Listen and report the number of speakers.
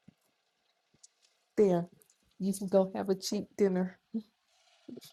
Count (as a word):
one